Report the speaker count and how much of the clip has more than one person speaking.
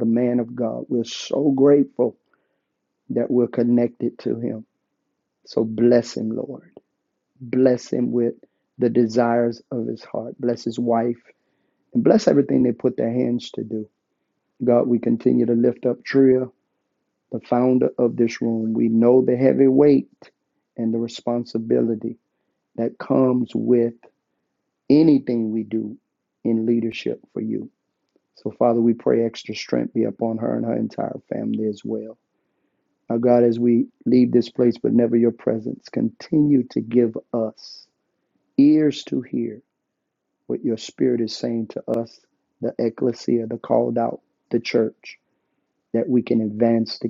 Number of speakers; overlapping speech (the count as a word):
one, no overlap